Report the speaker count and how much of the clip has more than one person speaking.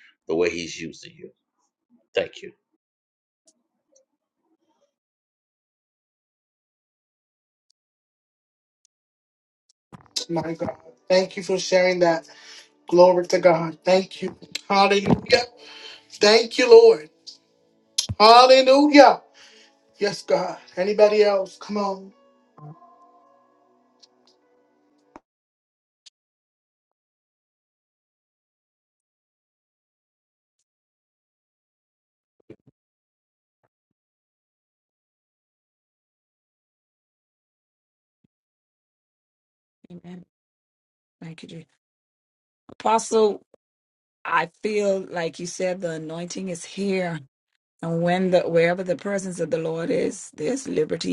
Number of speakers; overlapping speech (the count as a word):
three, no overlap